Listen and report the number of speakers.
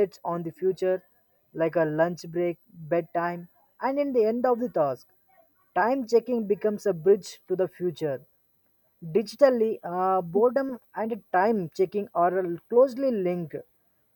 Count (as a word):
one